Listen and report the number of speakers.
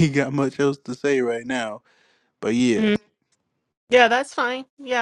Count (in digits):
2